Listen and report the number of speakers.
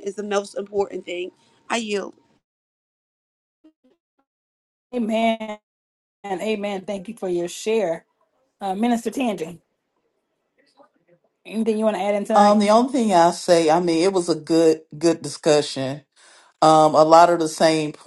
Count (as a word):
three